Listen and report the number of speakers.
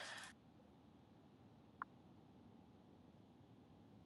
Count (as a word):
zero